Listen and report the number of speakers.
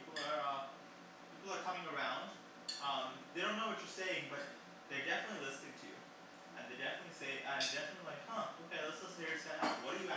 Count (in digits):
1